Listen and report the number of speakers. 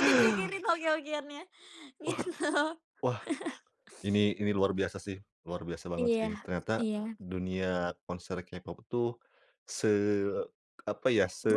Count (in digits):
2